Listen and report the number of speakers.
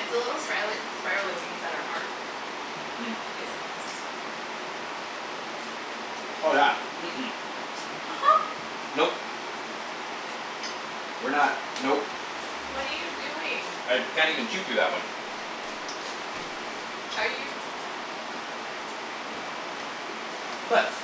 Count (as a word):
two